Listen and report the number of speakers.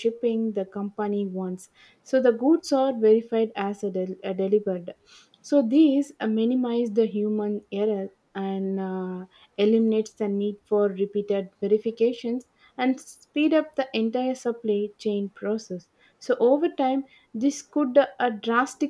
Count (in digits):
1